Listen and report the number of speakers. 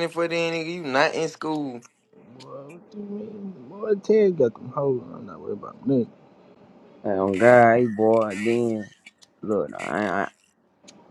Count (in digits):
3